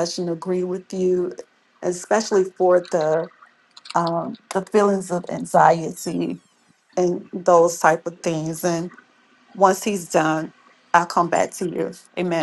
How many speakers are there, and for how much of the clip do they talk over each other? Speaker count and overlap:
one, no overlap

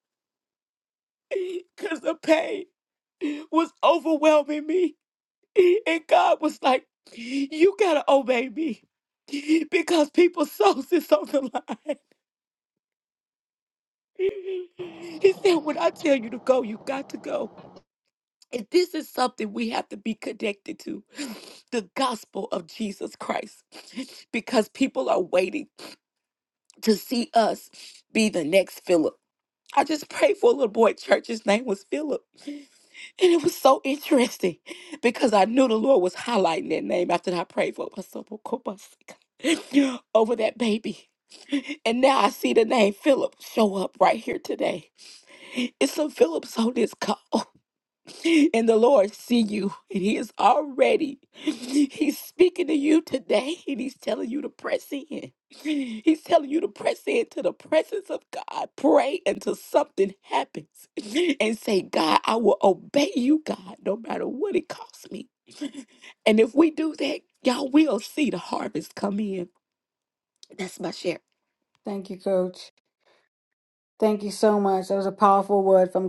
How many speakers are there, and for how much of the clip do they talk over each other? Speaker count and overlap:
two, no overlap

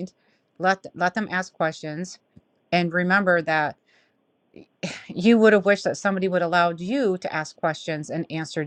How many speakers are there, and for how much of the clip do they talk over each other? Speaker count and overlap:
one, no overlap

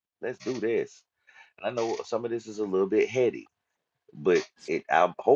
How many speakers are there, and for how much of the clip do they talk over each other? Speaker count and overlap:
one, no overlap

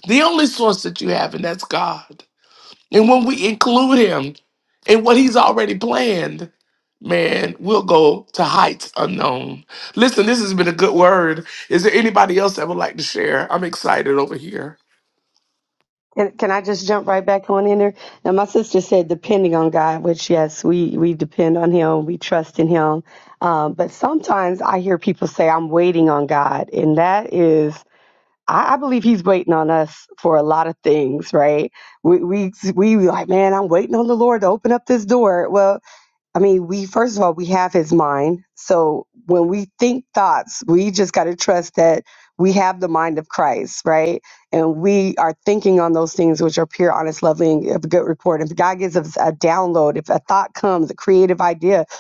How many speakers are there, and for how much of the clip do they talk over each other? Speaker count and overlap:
two, no overlap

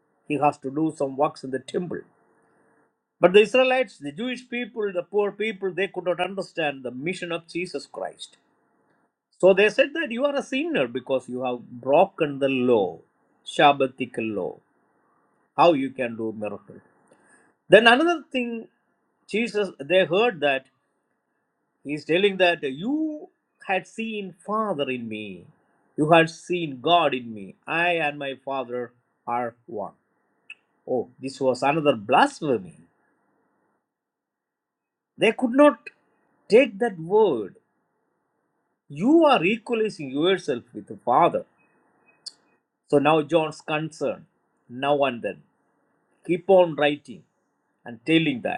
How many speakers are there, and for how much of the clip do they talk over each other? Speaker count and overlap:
one, no overlap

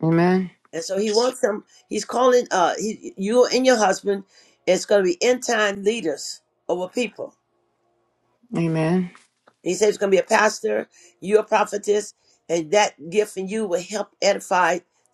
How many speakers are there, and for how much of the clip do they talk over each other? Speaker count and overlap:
two, no overlap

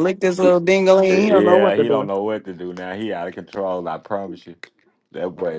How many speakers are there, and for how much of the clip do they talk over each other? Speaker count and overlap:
two, about 18%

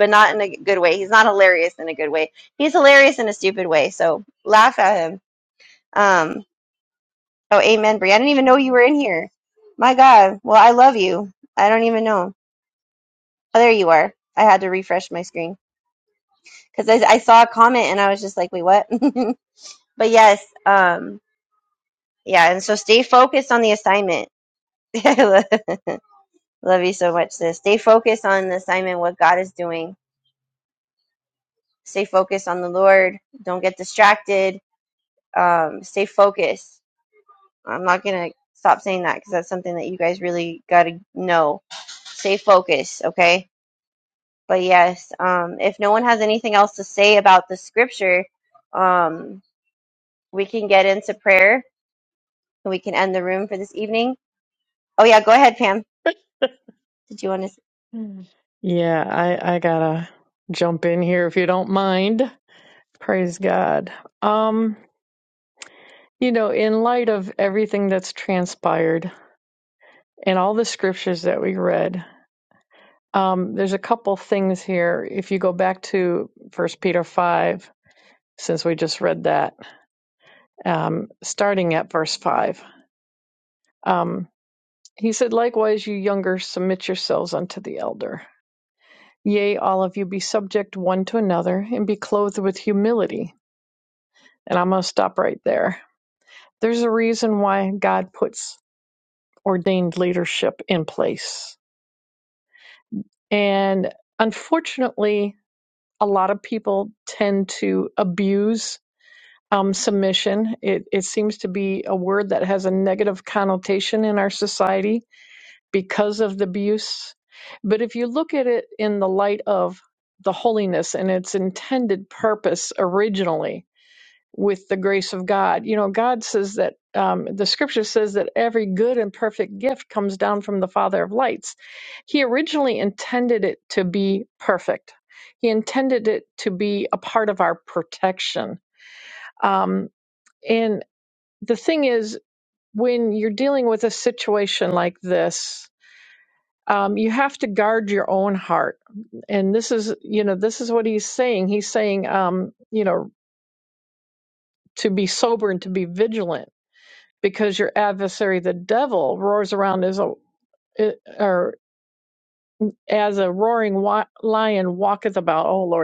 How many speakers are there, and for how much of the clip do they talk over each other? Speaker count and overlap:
two, no overlap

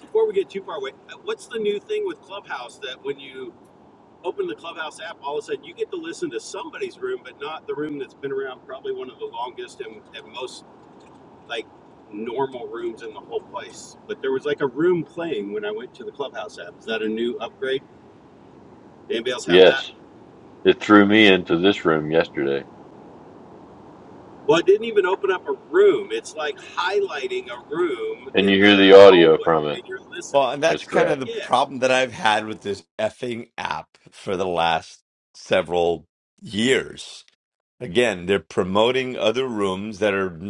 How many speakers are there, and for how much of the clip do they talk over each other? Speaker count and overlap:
three, about 7%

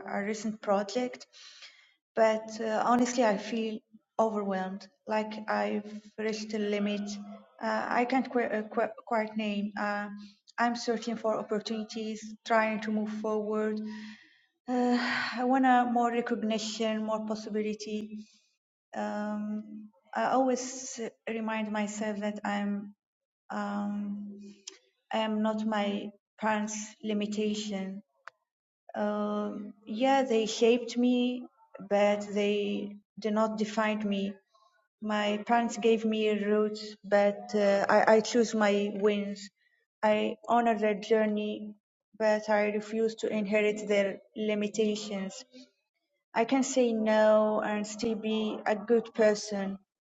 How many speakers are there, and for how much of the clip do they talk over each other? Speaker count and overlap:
one, no overlap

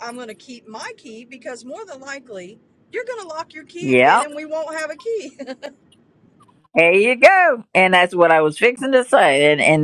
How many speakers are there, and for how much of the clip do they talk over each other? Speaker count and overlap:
two, about 4%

